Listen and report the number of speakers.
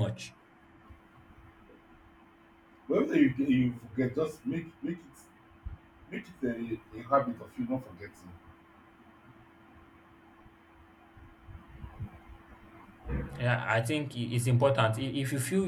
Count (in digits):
2